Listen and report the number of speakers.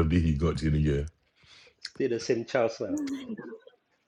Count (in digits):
2